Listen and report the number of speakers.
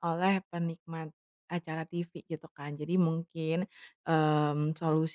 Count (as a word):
one